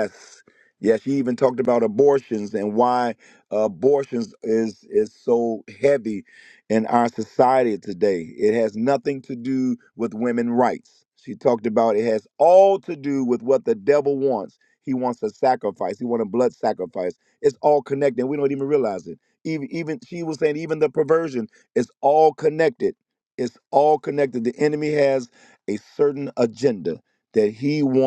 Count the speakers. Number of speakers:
one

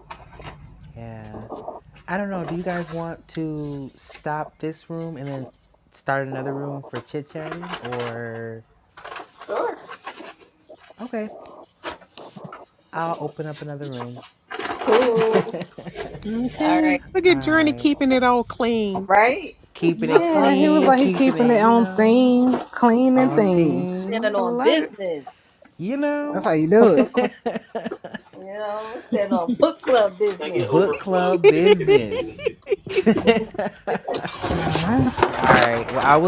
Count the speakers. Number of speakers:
four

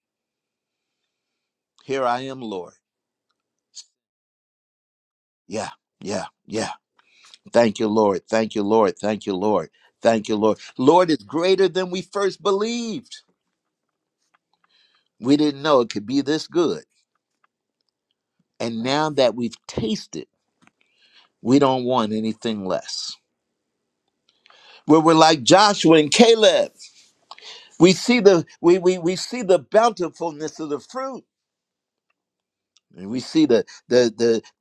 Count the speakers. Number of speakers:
one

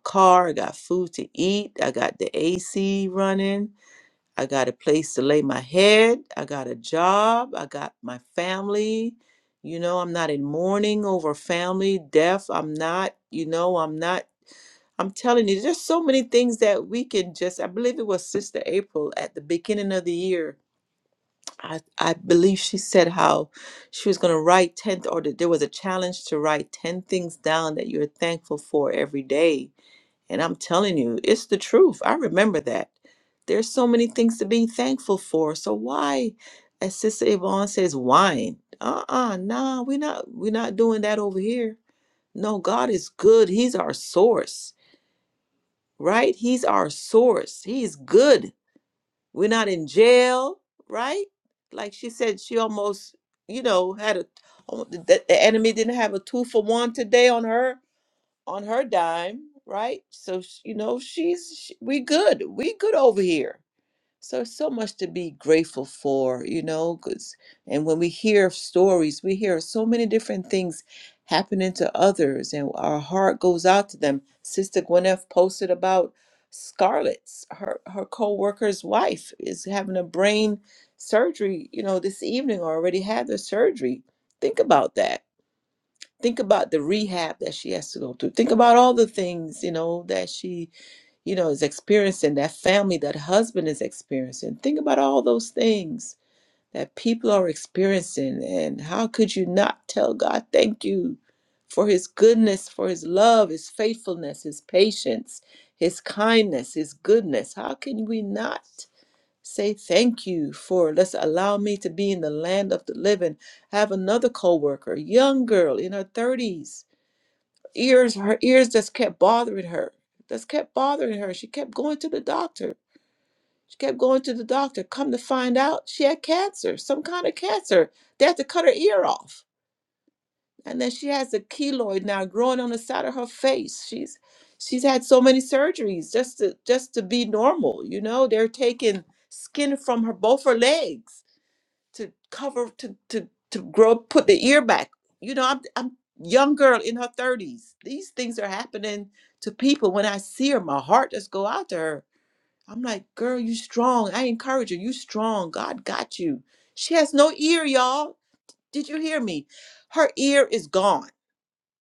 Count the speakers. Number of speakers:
one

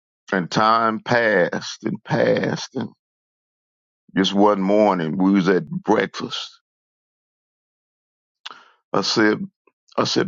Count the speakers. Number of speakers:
one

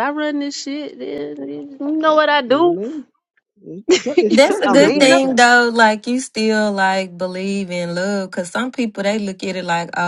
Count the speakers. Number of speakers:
three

